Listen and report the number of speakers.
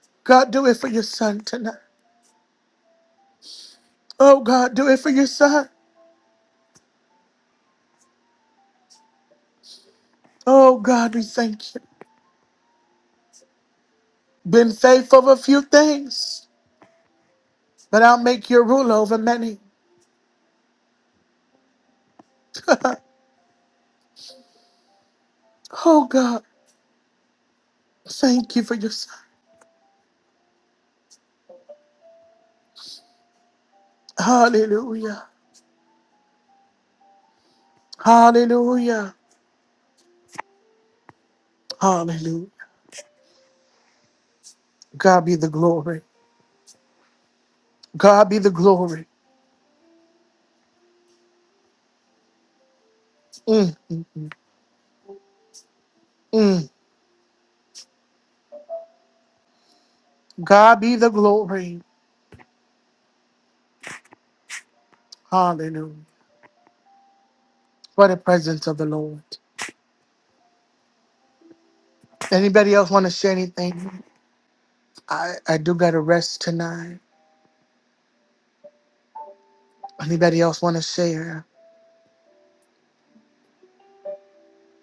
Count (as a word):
one